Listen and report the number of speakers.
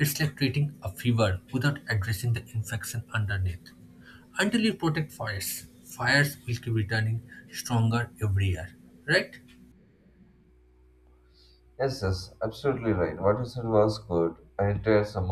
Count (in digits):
2